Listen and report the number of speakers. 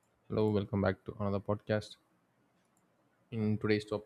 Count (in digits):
1